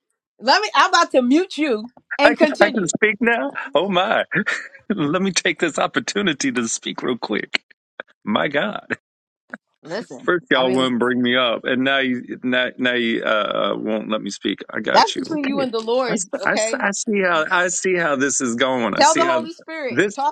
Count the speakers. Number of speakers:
two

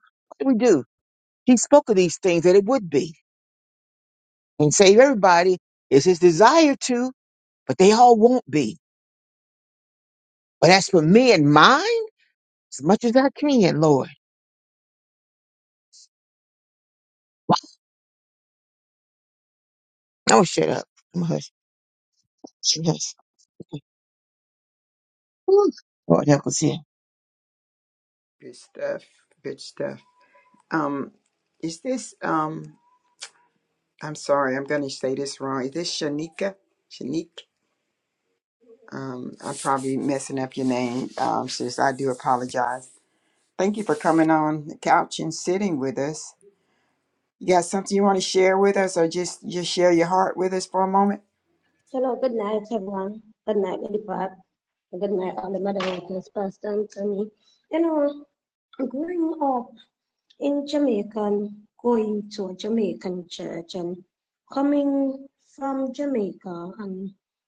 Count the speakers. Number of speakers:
three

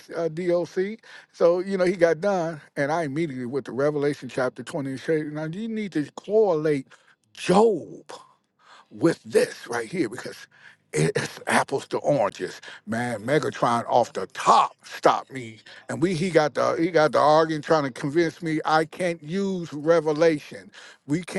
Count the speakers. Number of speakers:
one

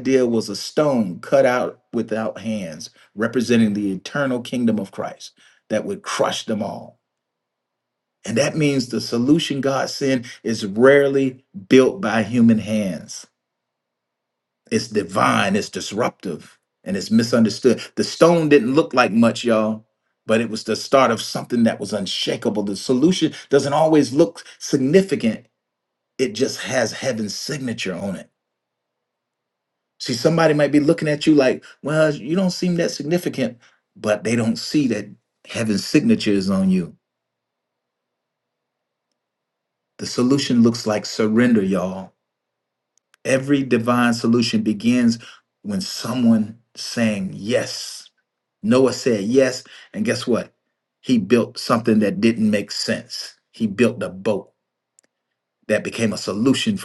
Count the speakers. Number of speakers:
one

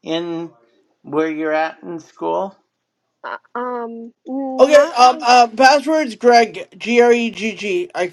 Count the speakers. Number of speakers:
three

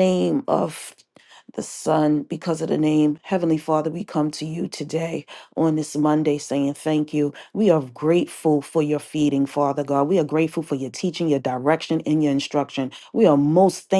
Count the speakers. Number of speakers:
one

